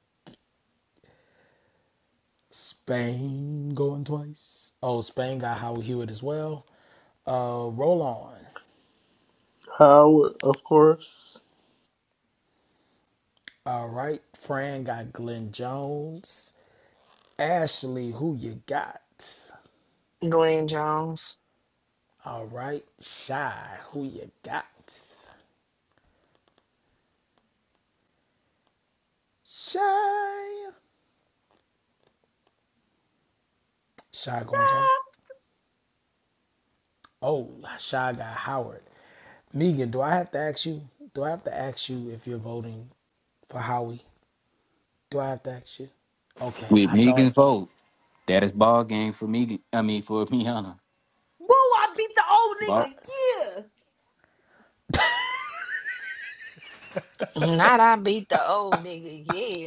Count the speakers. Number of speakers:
five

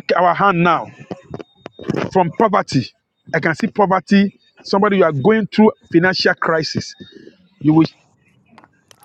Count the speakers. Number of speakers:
one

